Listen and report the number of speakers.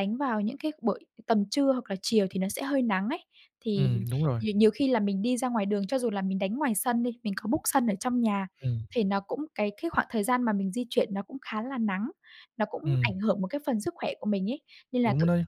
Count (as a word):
two